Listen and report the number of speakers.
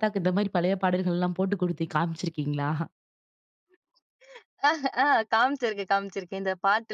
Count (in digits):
2